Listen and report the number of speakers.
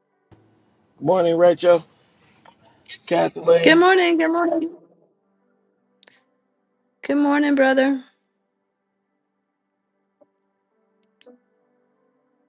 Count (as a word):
two